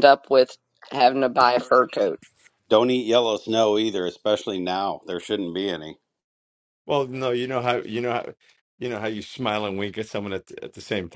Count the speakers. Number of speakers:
three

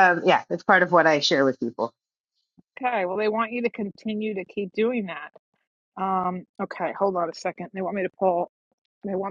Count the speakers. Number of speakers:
two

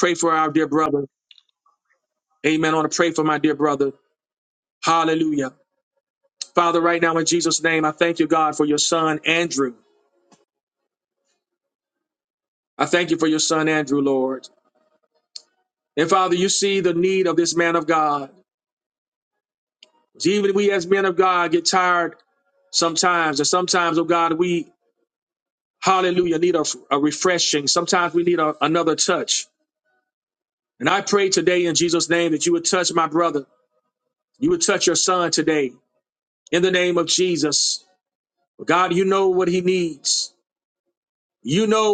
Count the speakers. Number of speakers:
one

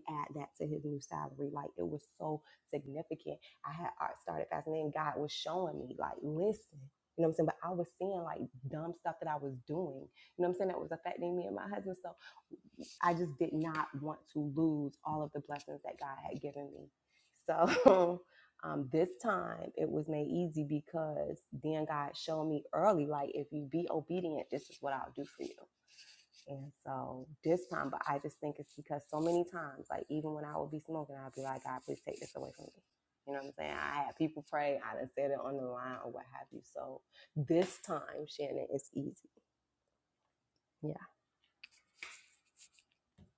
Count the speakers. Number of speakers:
one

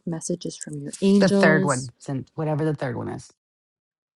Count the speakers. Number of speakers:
two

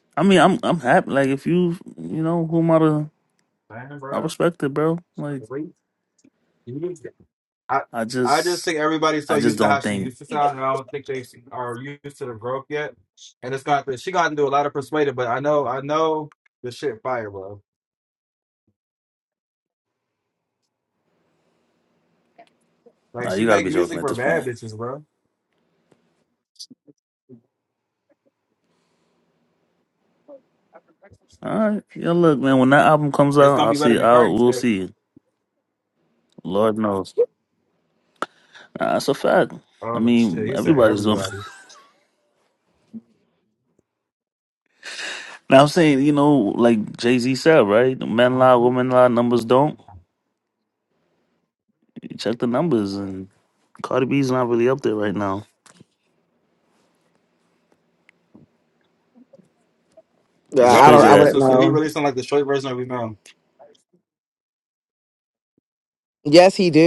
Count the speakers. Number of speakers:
three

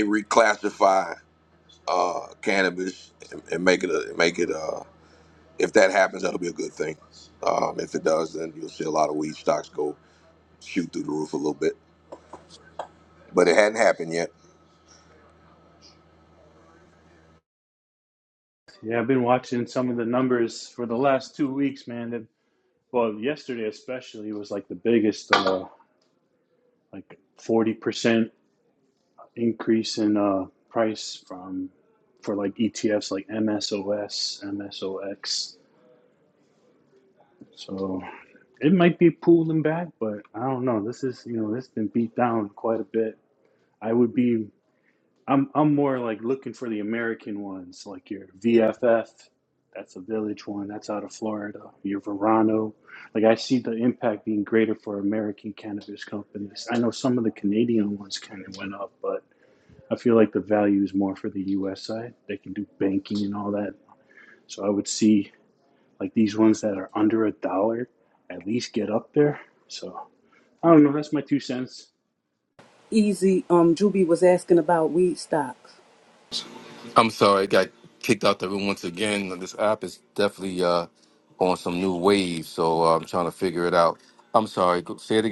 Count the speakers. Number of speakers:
four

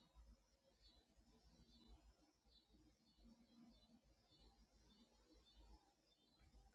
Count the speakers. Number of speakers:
zero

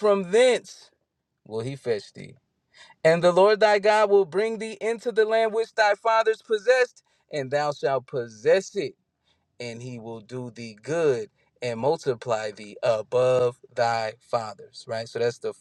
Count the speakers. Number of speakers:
one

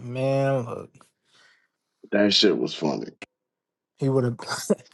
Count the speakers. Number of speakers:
two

